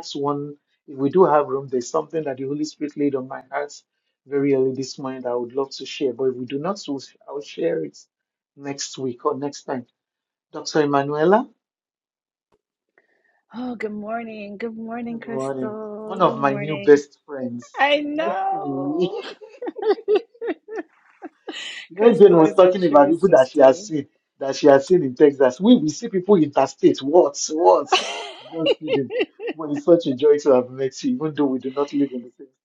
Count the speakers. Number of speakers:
two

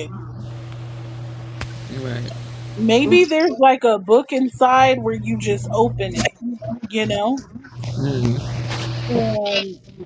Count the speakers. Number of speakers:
two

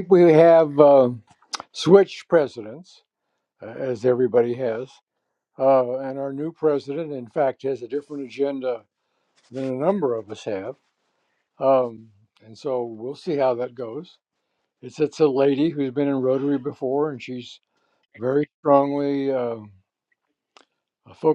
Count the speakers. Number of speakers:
one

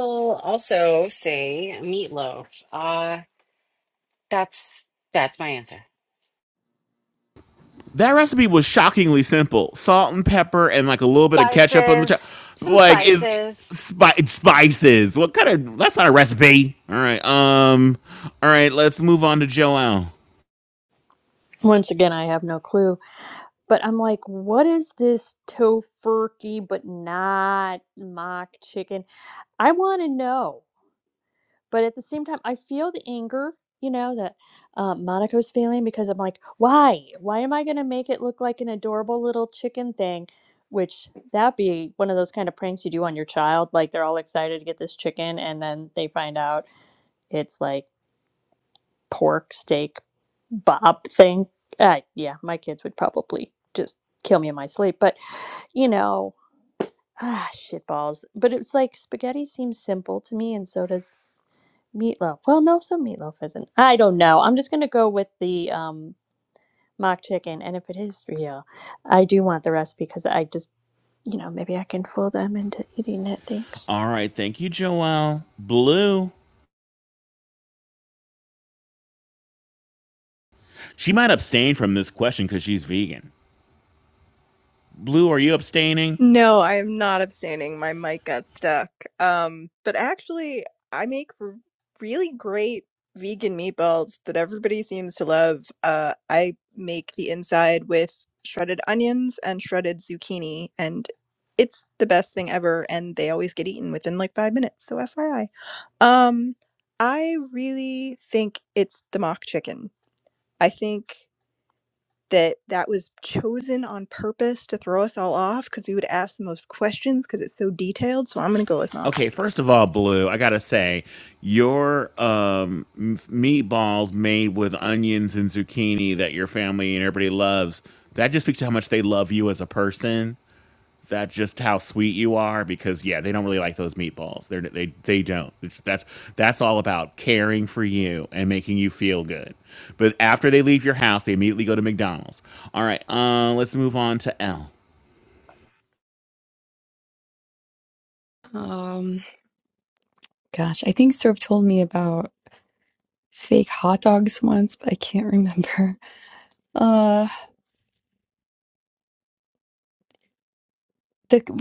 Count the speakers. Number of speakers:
five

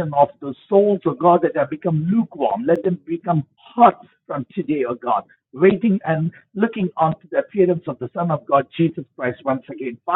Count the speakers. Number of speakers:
one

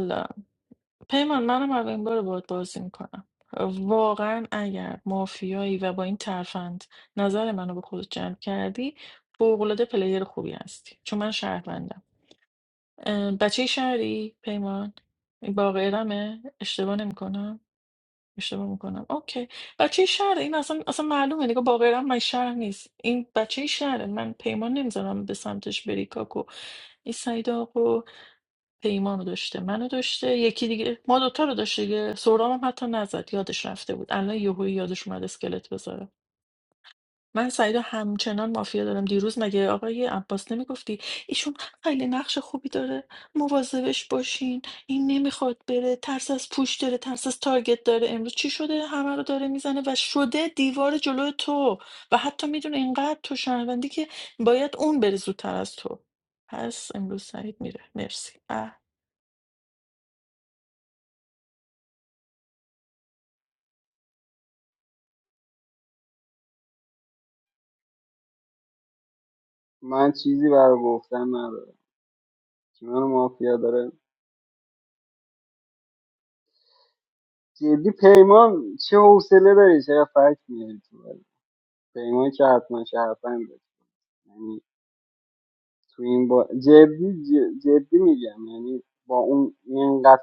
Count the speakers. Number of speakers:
two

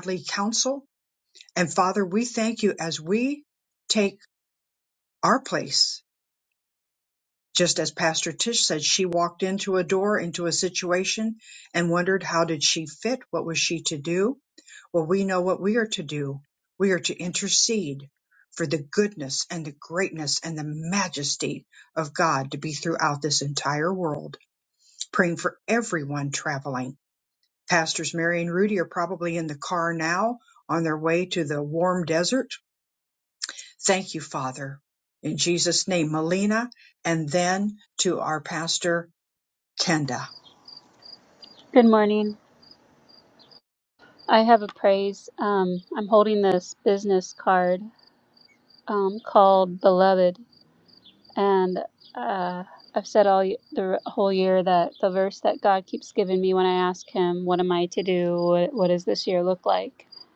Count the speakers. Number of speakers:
two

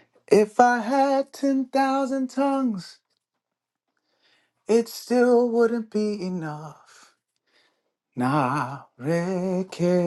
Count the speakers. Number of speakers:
one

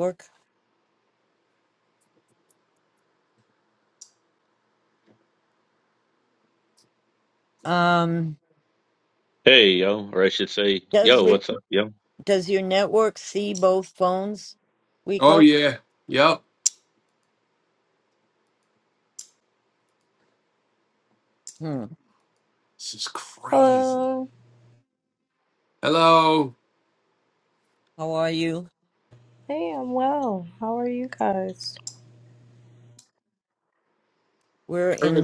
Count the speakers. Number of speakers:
four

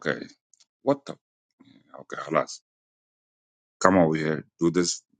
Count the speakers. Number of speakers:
one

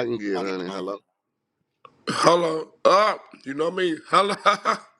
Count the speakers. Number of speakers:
two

